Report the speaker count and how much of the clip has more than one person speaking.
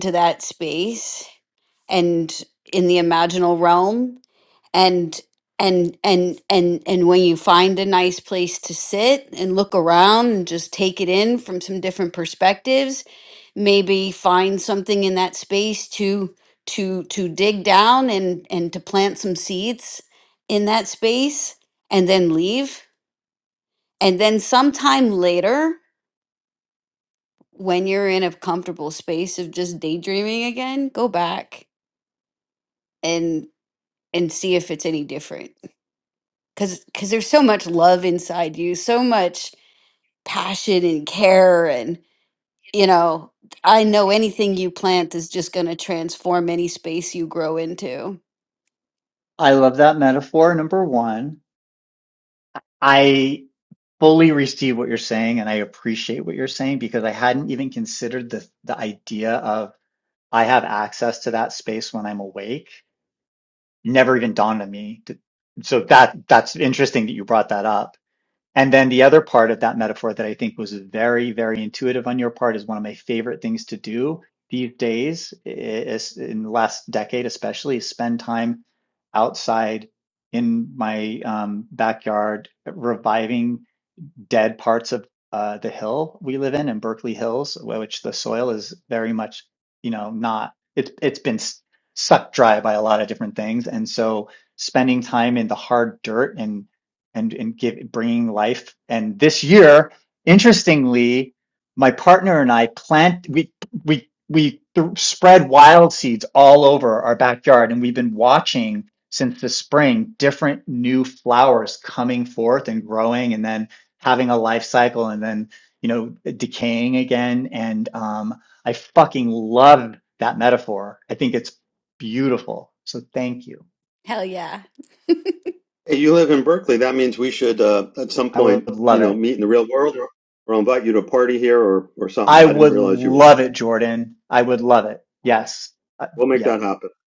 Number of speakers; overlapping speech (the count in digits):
3, about 2%